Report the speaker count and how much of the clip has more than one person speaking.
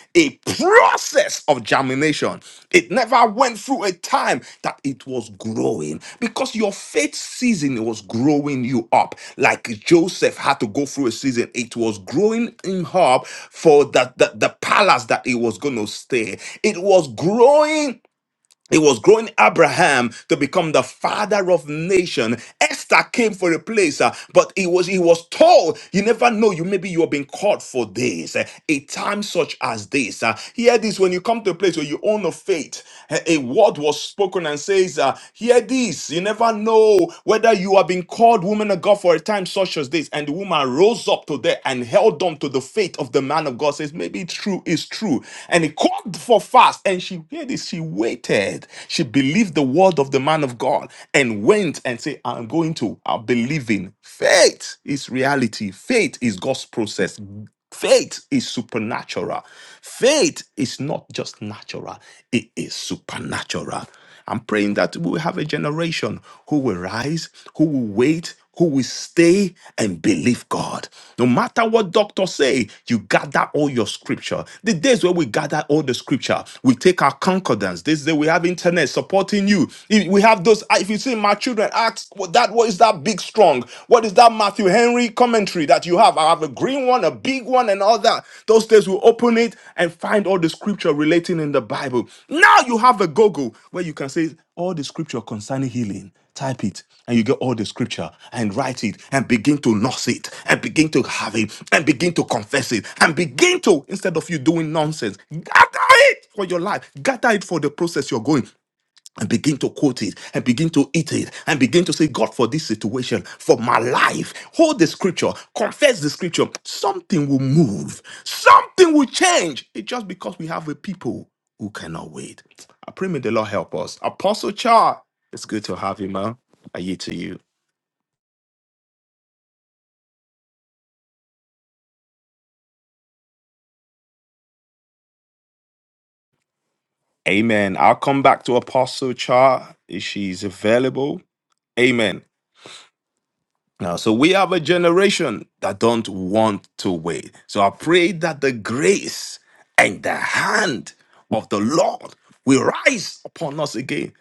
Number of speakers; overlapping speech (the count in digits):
1, no overlap